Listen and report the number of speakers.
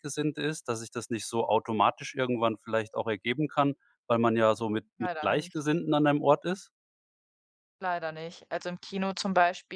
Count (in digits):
2